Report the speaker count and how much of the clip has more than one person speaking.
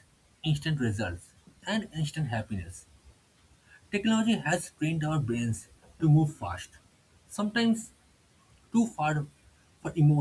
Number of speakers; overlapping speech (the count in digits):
1, no overlap